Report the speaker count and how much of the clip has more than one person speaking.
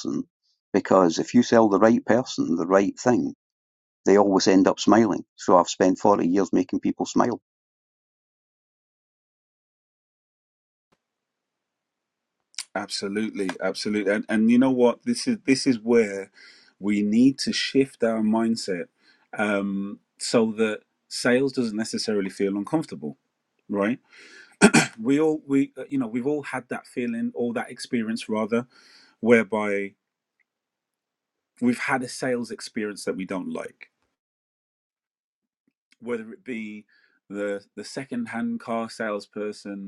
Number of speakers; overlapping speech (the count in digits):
2, no overlap